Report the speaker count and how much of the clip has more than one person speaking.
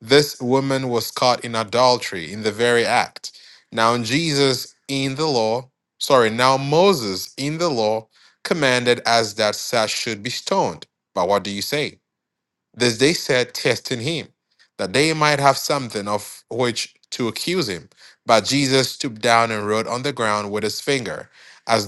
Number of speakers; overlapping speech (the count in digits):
1, no overlap